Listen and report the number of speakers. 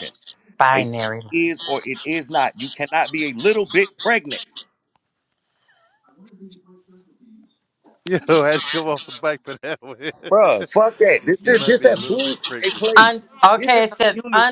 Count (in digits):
3